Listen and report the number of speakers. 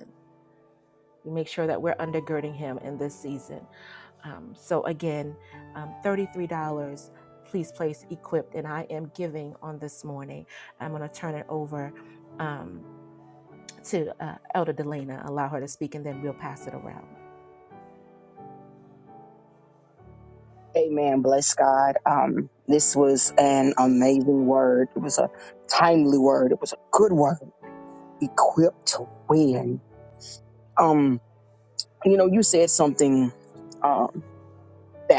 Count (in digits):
2